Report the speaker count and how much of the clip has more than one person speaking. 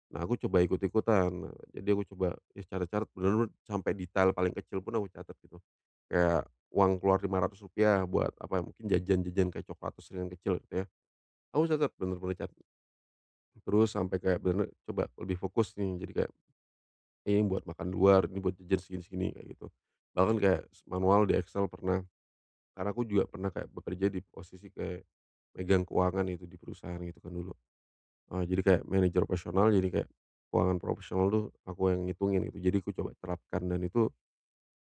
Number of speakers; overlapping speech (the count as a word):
one, no overlap